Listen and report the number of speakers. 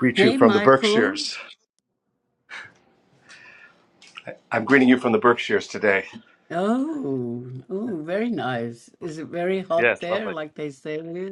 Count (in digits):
2